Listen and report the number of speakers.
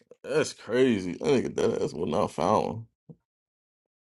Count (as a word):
one